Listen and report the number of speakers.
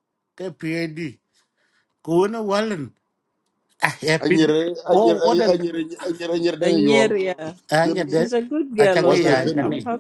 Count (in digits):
3